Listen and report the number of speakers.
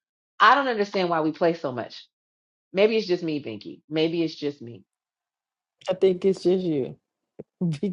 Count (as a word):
two